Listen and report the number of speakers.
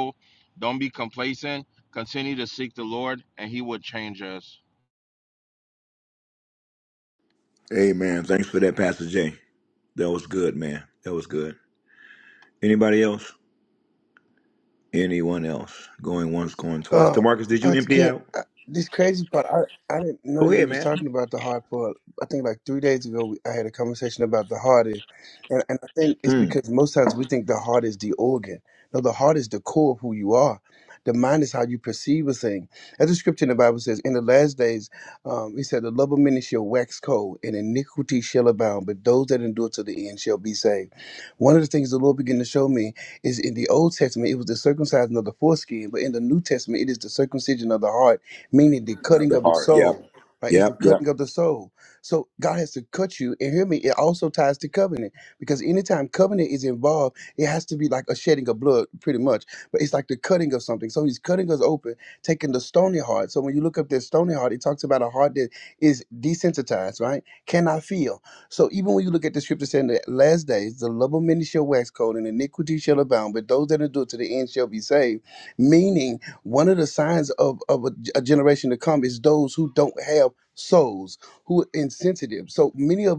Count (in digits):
3